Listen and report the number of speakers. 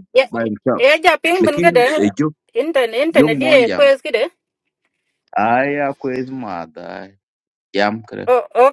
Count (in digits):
2